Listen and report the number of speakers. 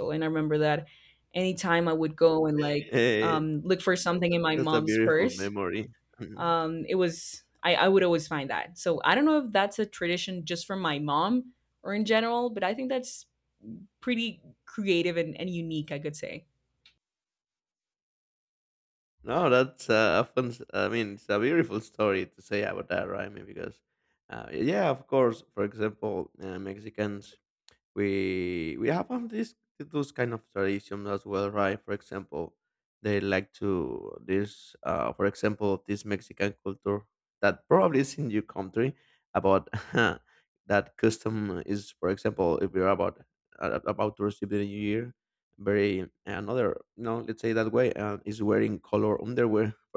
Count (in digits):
2